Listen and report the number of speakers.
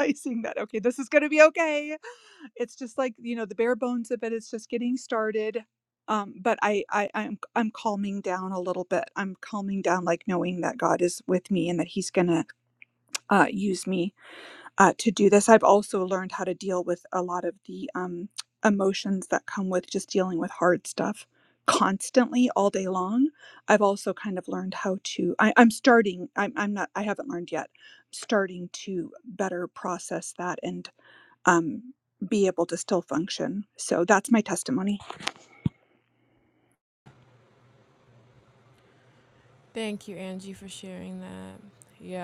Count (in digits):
2